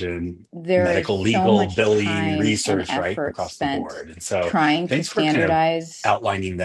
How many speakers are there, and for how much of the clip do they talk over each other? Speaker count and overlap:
2, about 64%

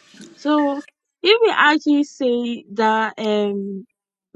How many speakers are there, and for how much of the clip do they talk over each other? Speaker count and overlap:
1, no overlap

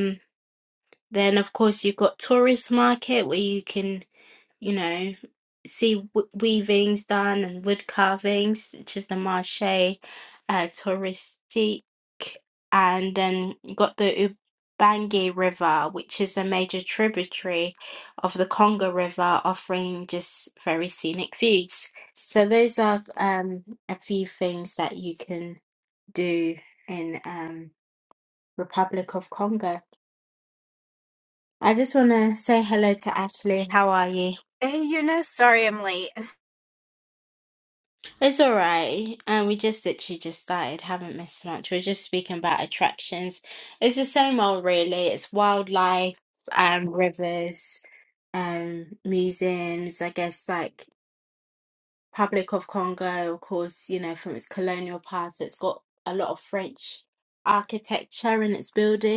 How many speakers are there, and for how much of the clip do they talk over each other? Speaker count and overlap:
2, no overlap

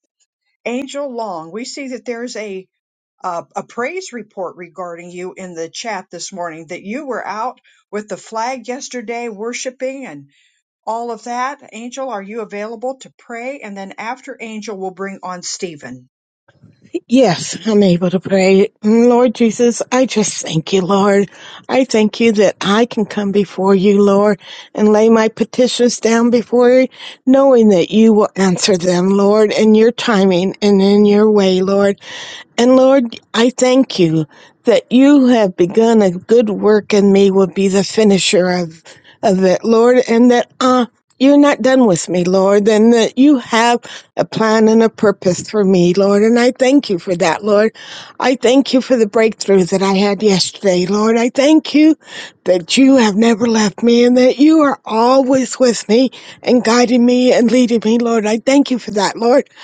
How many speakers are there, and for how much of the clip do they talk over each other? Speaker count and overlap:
2, no overlap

